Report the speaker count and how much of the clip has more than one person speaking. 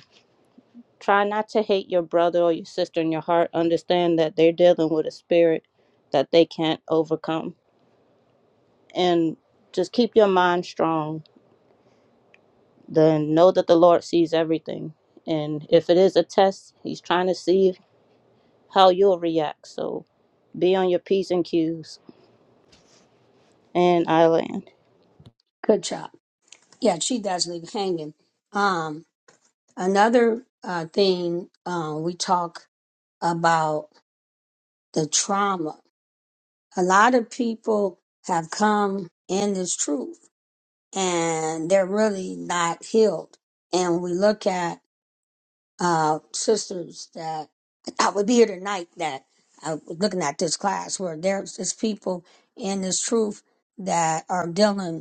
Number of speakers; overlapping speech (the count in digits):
2, no overlap